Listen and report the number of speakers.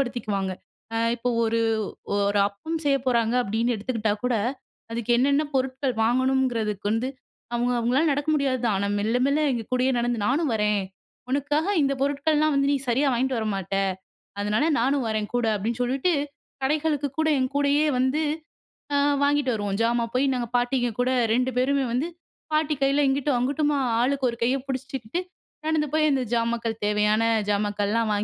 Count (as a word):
one